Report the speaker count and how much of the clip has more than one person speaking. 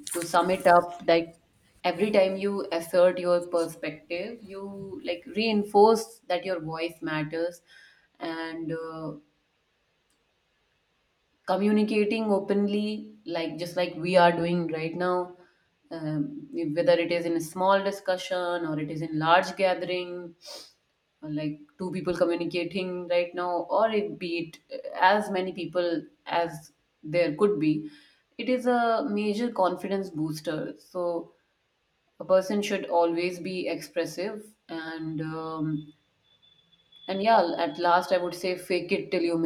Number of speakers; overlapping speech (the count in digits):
1, no overlap